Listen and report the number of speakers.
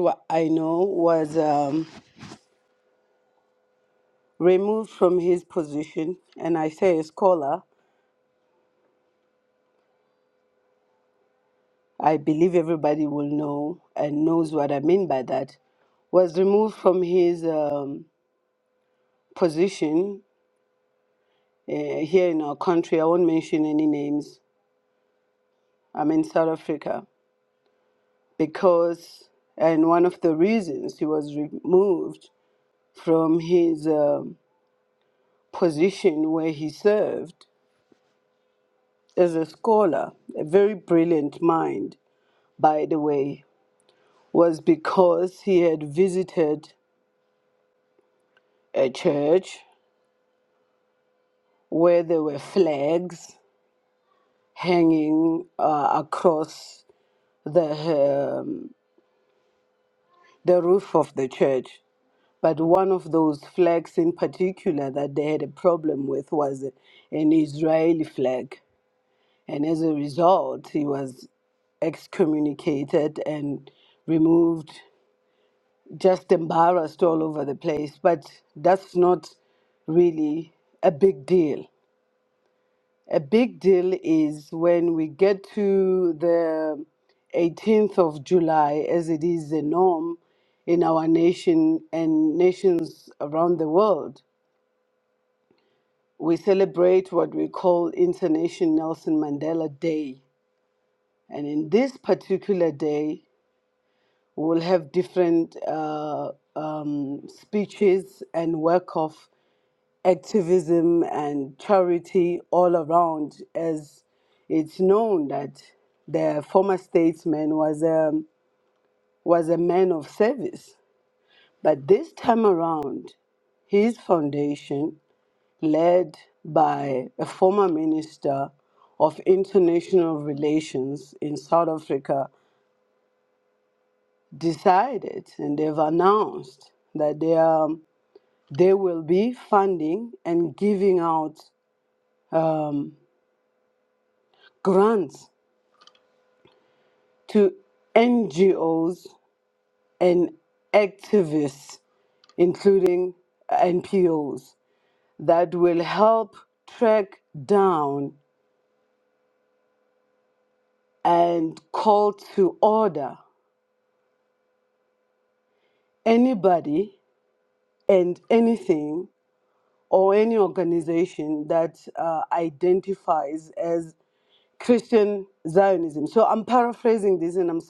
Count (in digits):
1